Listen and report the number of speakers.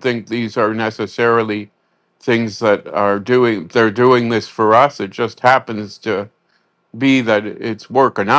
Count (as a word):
one